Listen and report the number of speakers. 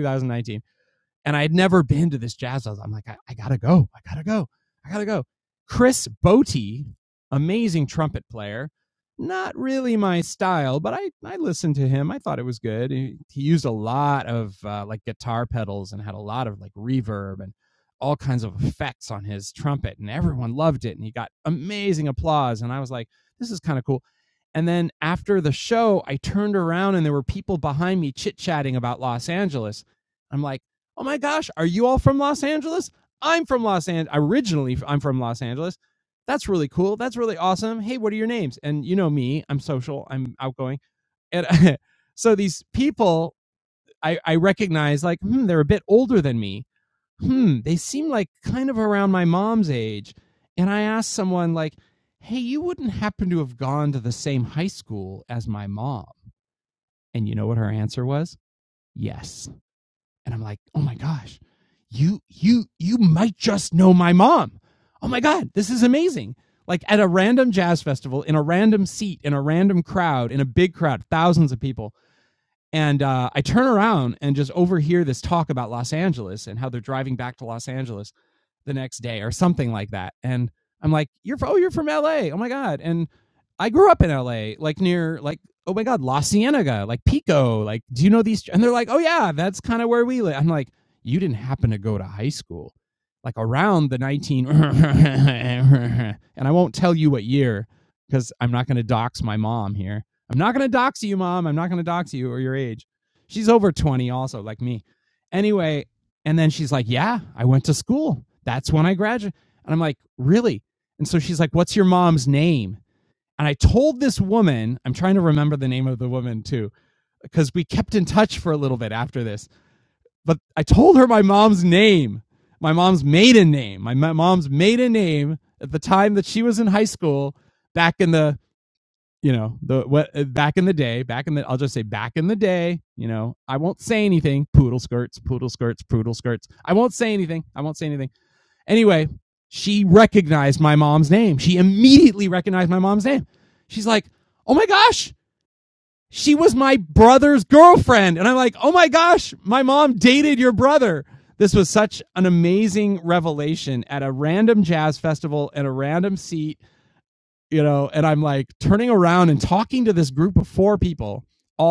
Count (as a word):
one